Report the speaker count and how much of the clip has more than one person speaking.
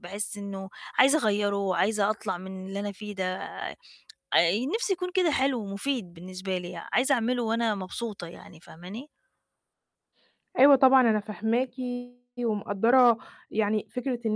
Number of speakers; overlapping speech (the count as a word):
two, no overlap